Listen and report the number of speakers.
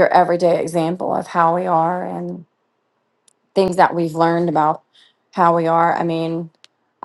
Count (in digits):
1